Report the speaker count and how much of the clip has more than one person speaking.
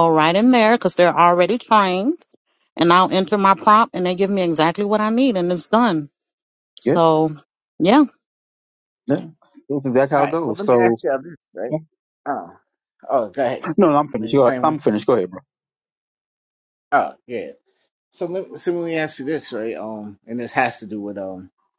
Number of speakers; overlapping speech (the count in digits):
3, about 7%